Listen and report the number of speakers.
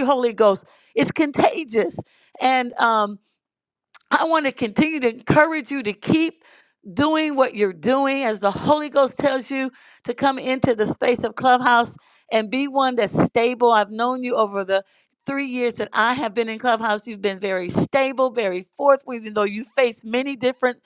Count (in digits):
1